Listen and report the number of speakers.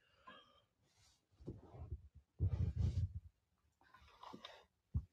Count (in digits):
0